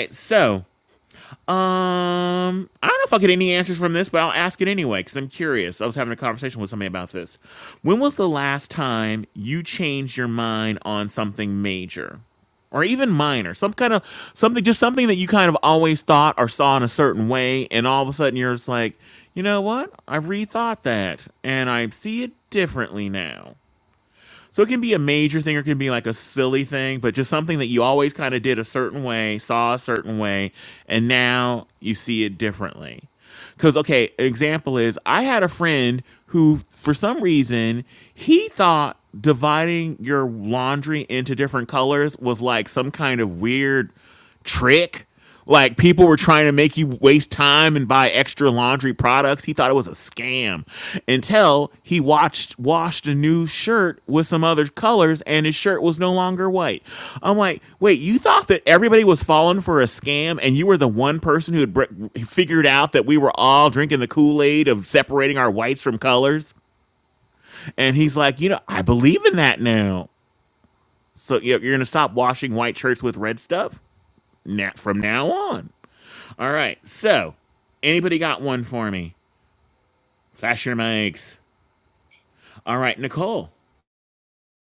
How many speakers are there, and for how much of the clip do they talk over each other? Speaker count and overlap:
1, no overlap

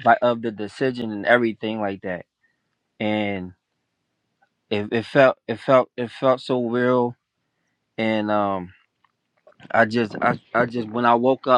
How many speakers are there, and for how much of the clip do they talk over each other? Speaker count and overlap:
1, no overlap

